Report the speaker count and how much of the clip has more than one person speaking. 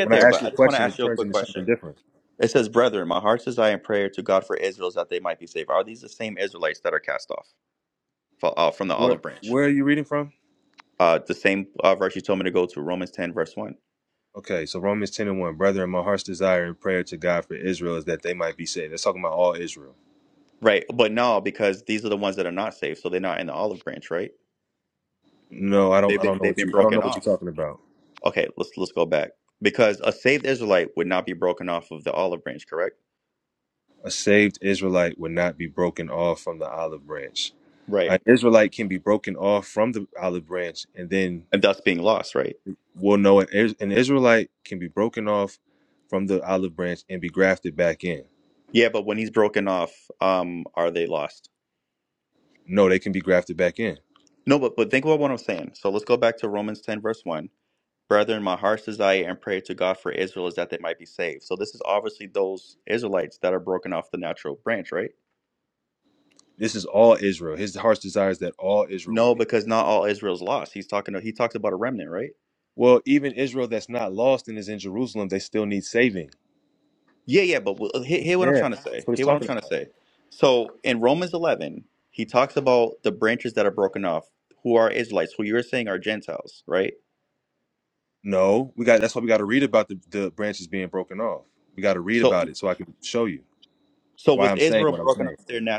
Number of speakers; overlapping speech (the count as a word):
two, about 6%